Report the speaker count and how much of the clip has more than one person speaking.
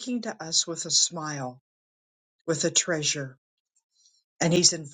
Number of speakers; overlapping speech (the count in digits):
1, no overlap